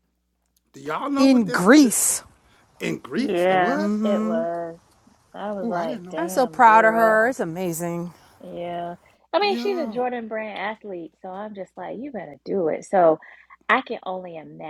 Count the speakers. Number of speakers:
3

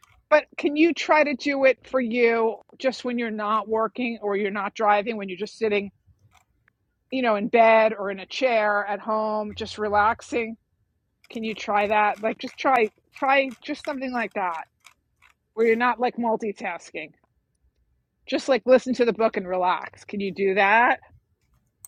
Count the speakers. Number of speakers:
1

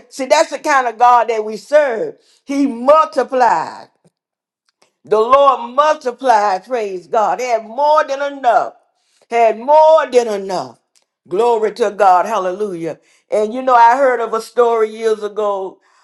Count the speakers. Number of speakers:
1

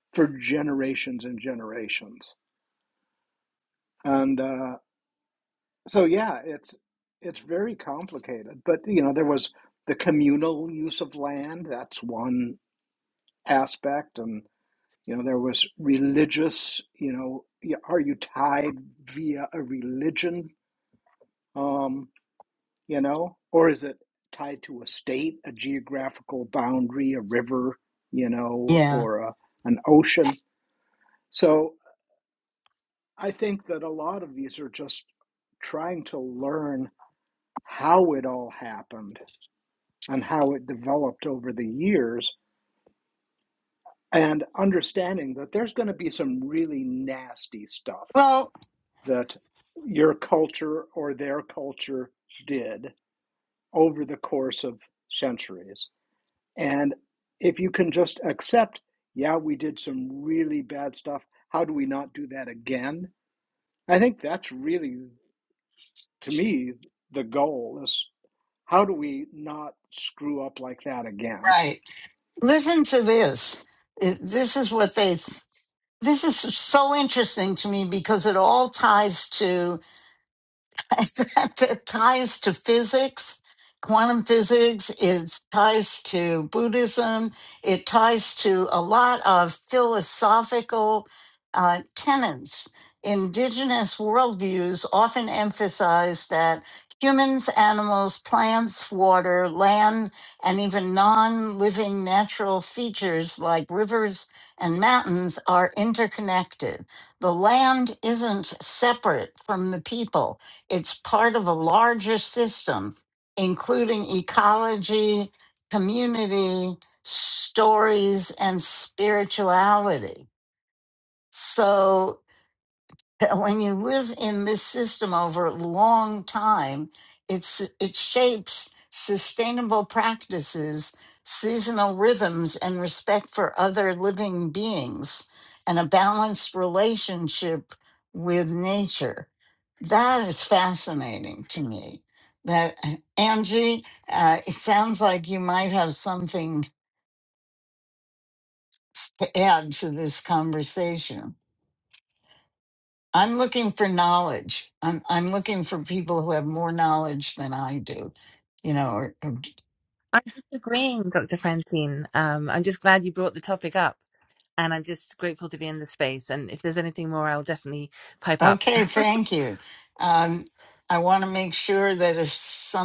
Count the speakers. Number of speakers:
3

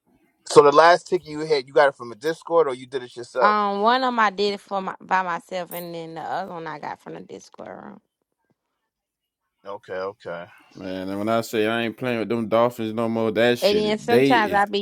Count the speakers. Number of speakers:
3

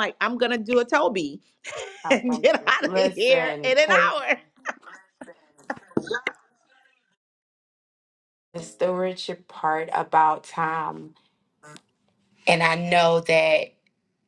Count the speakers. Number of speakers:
2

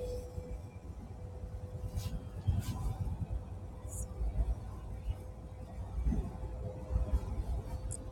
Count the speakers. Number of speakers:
0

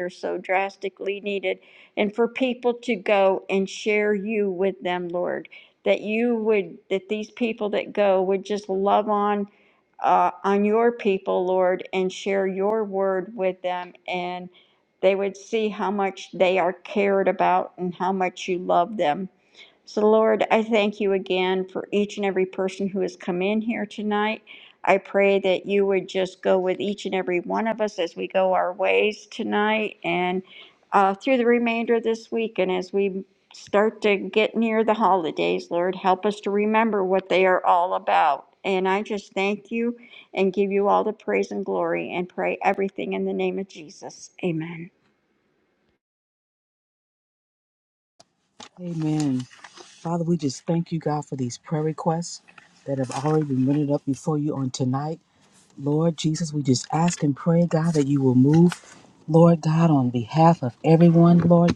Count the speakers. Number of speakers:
2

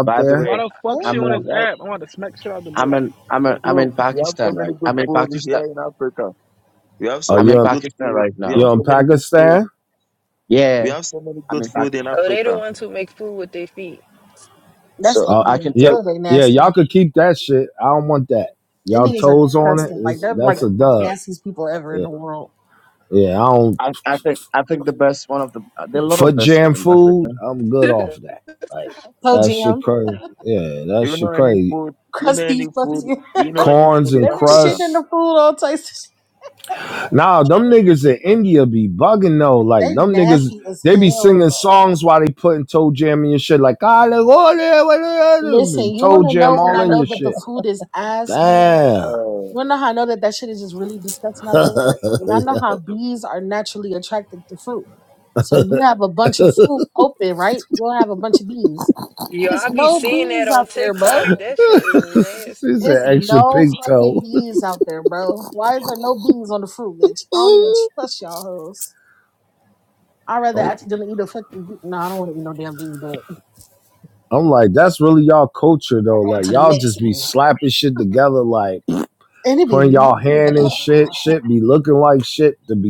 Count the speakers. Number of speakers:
6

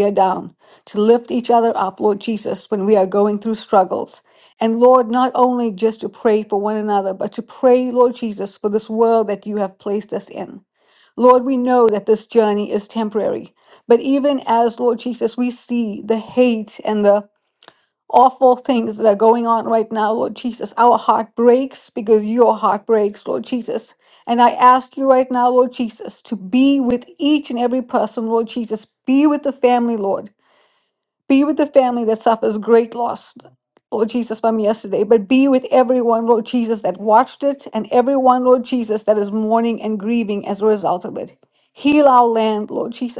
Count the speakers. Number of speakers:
1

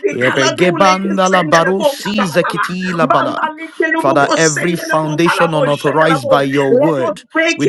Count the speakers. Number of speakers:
2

